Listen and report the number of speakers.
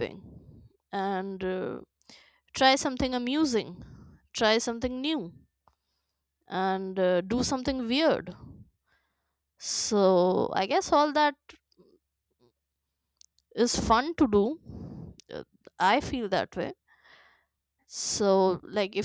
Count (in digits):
1